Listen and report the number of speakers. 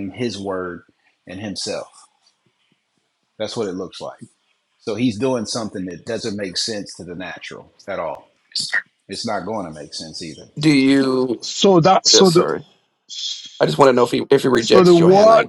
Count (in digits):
3